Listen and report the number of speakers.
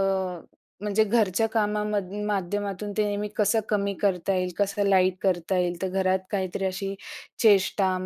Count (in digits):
1